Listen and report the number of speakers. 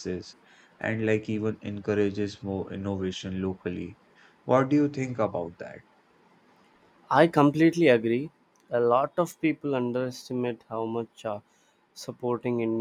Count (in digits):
2